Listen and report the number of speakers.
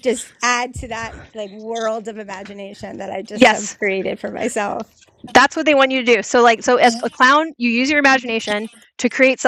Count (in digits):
2